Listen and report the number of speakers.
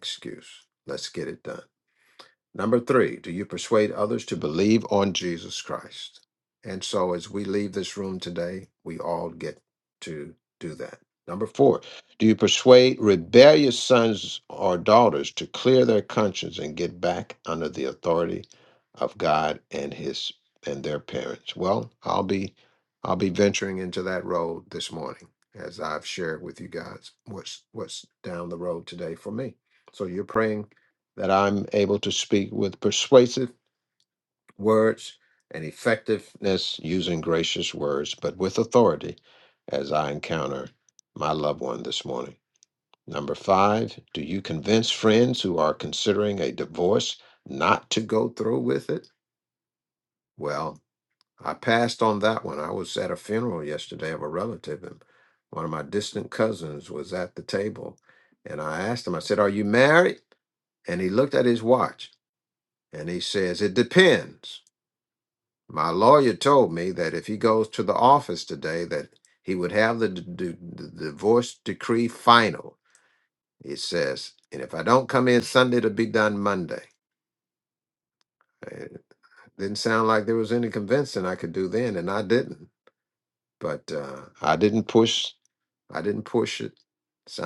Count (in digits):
1